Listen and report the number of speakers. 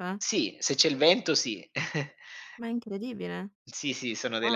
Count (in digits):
2